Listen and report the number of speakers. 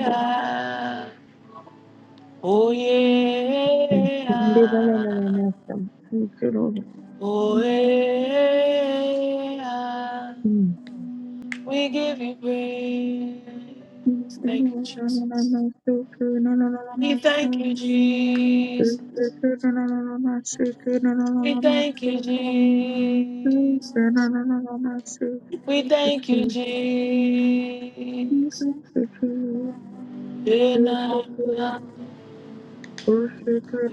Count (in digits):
2